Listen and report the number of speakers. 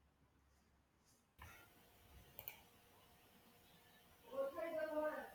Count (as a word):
zero